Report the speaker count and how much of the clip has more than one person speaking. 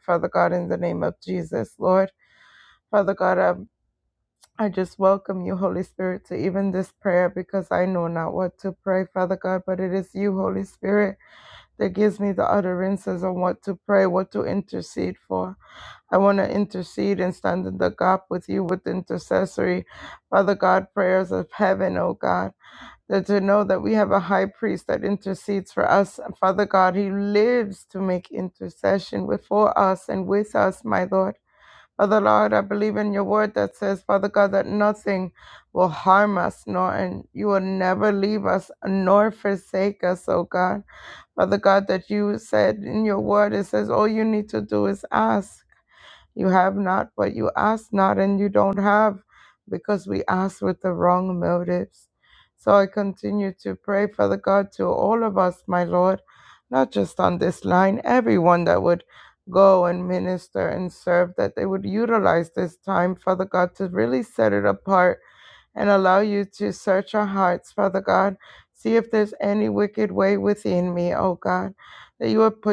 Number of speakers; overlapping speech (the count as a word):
one, no overlap